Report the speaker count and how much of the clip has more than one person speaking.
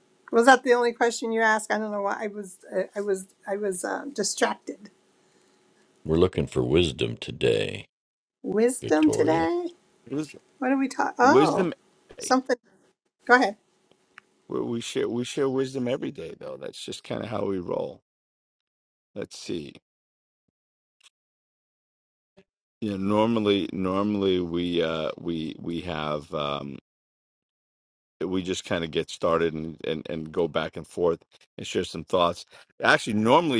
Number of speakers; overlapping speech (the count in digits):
3, about 3%